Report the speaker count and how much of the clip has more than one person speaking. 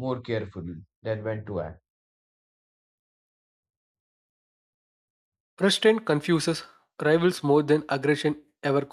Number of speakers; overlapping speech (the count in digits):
2, no overlap